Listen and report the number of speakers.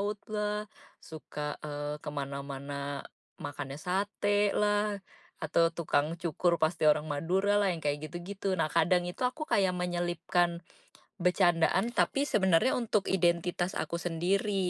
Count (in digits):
1